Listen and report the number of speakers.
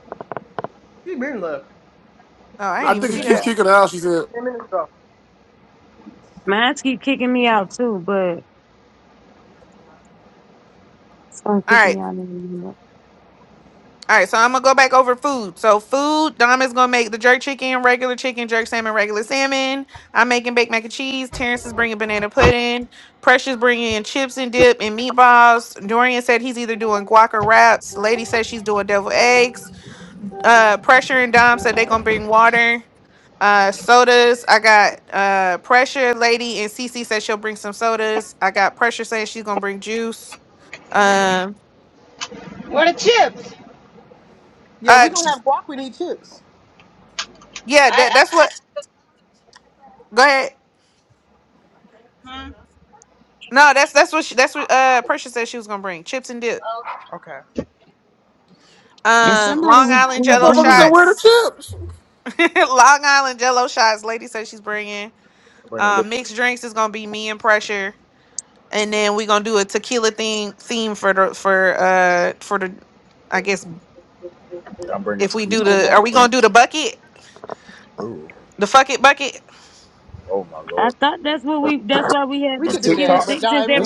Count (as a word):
six